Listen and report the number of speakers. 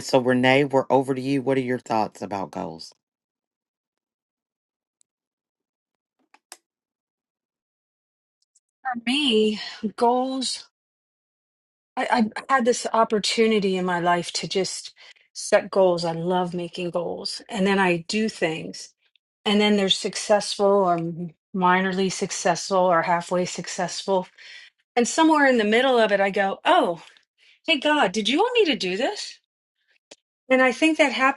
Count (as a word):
two